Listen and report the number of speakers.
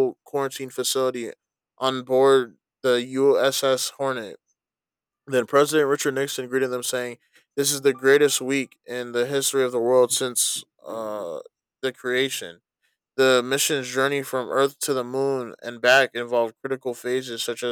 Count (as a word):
one